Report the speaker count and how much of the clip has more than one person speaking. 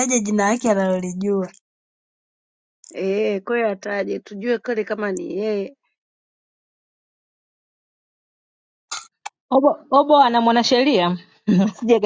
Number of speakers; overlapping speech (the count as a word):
three, no overlap